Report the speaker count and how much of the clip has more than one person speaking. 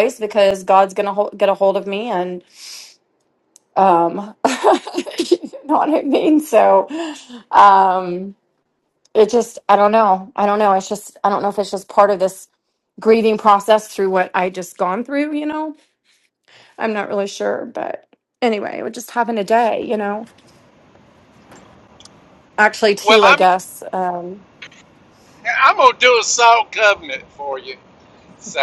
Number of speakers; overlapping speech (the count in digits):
2, about 1%